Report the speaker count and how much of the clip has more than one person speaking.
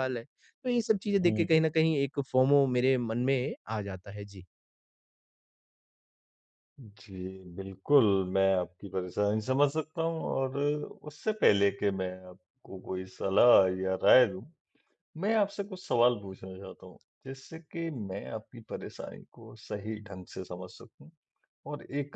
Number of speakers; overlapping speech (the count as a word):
two, about 1%